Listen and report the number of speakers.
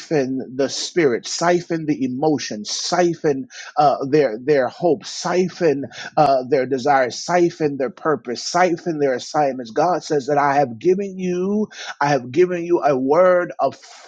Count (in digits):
1